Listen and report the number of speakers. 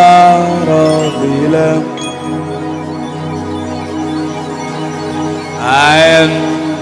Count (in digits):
1